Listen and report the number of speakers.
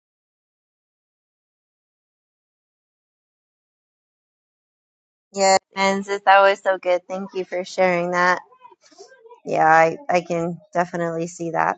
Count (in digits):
1